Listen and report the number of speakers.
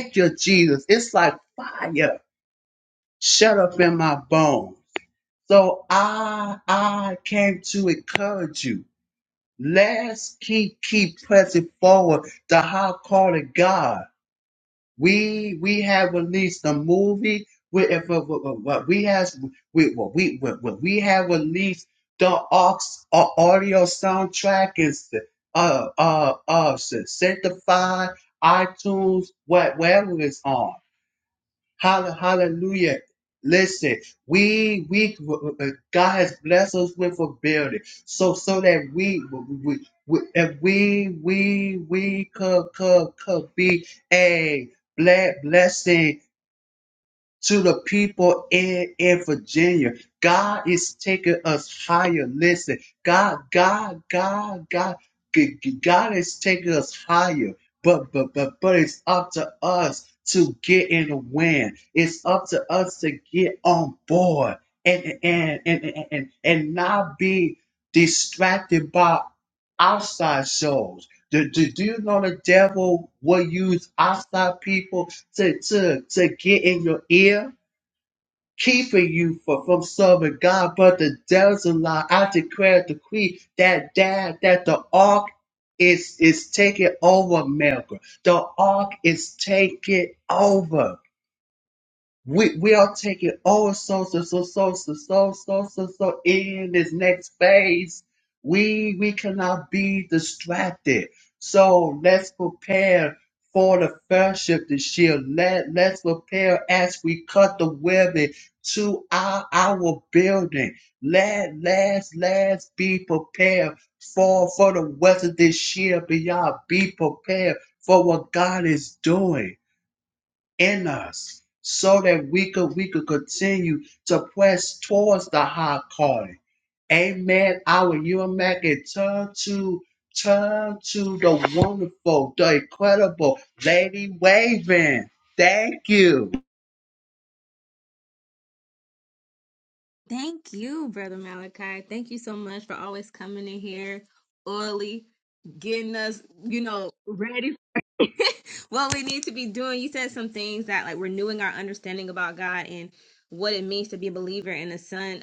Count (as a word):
two